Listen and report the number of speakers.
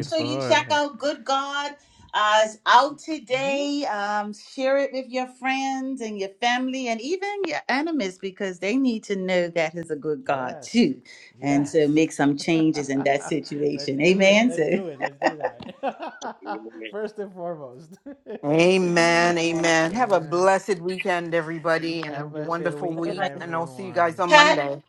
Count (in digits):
3